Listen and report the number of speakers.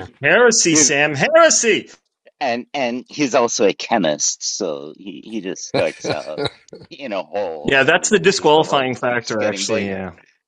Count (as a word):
two